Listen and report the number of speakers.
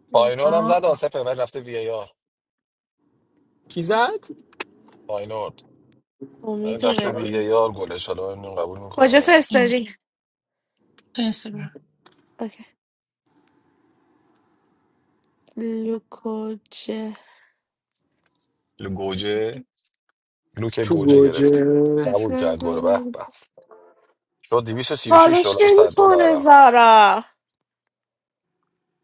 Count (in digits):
4